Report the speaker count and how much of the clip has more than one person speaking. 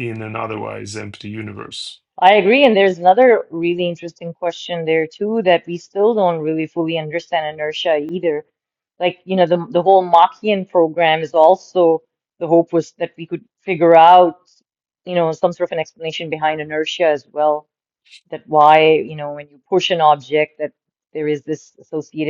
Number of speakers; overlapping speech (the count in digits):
2, no overlap